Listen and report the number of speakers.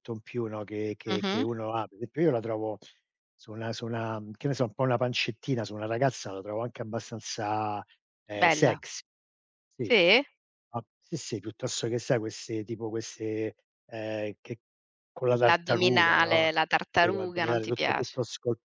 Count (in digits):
2